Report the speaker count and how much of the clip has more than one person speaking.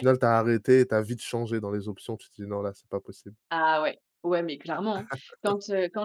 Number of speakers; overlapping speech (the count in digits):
2, about 1%